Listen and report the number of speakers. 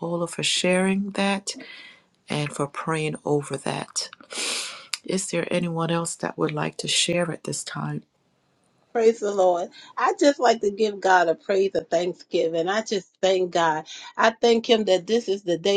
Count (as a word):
two